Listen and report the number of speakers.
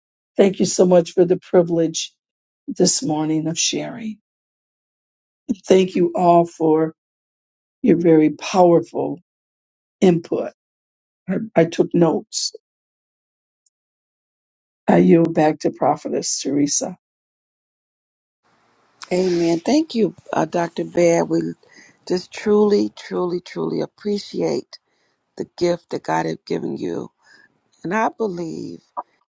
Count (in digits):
2